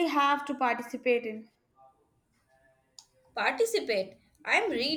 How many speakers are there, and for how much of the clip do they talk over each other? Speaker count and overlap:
2, no overlap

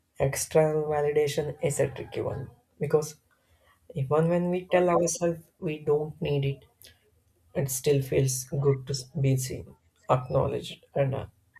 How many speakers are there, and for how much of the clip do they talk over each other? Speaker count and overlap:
1, no overlap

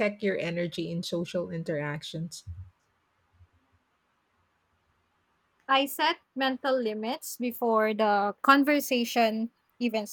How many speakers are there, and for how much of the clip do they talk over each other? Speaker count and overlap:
2, no overlap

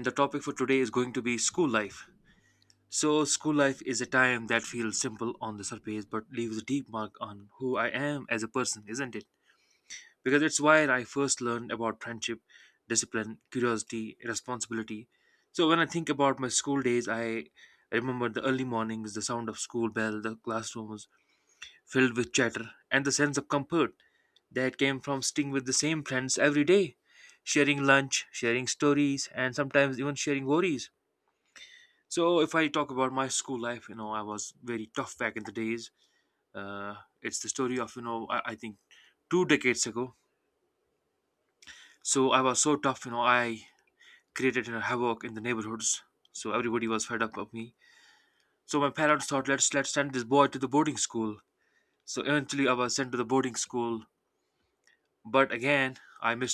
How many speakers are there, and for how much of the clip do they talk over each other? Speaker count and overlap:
1, no overlap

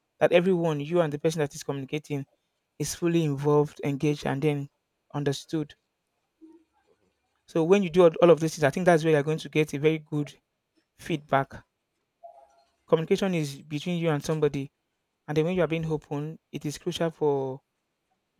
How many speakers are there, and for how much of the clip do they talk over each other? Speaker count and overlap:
1, no overlap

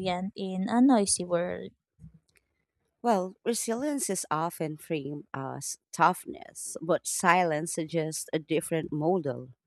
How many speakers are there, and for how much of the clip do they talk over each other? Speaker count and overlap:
2, no overlap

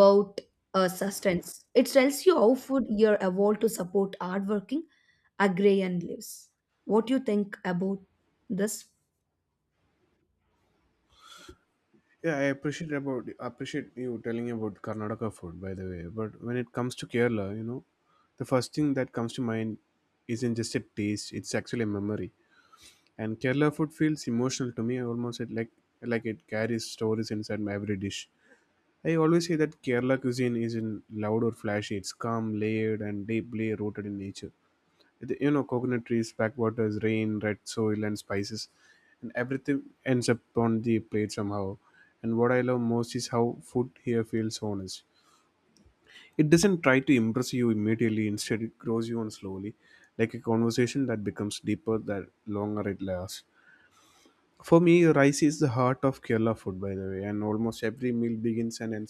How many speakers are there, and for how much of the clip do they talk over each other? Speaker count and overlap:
2, no overlap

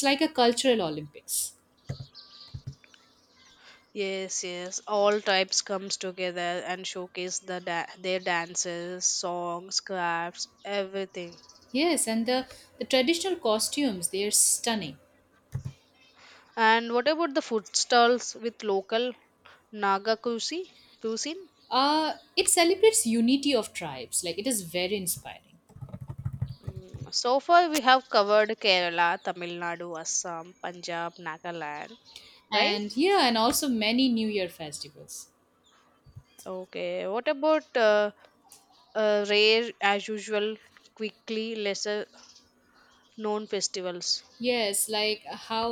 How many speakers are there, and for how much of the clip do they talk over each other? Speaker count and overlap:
2, about 1%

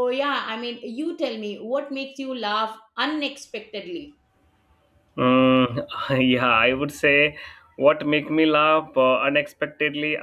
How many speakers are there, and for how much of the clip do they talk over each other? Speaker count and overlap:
2, no overlap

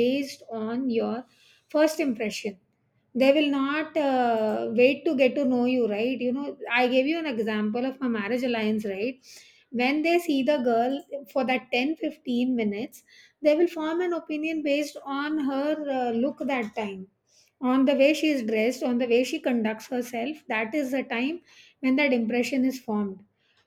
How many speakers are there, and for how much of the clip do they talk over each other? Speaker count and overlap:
1, no overlap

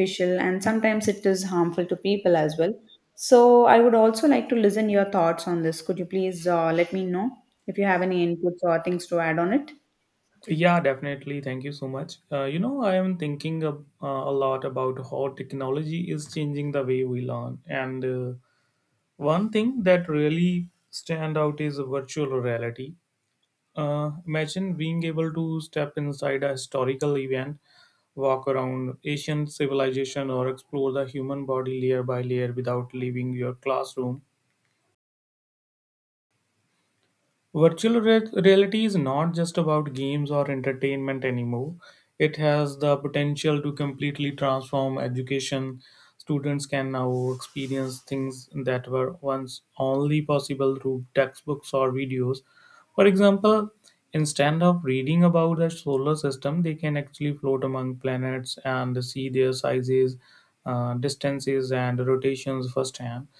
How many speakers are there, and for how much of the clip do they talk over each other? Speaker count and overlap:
2, no overlap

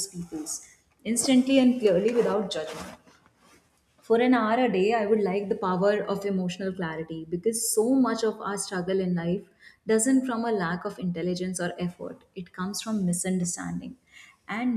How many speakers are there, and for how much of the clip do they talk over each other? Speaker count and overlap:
1, no overlap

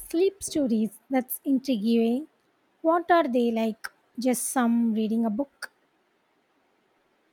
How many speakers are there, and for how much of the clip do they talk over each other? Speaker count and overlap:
1, no overlap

